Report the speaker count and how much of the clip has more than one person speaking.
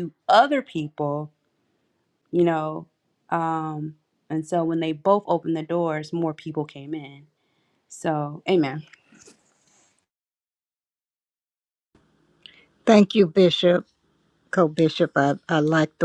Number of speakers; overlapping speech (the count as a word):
two, no overlap